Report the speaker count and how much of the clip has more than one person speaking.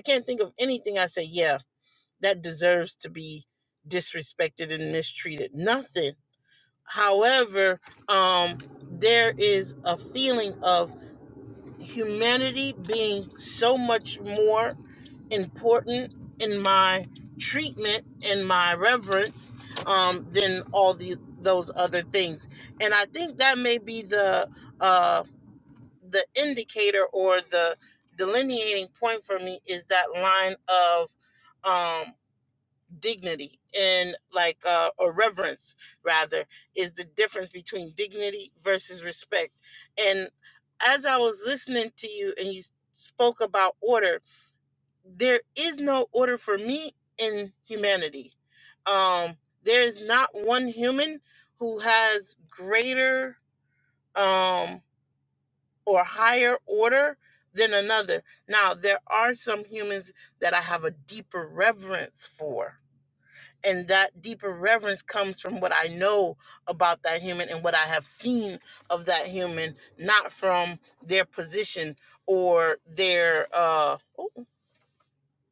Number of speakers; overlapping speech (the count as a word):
one, no overlap